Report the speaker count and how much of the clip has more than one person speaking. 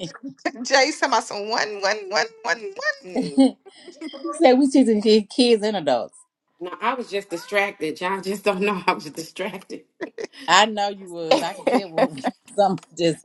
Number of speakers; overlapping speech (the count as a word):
three, about 2%